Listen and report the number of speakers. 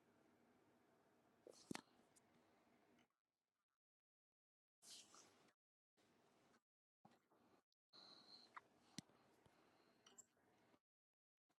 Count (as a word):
zero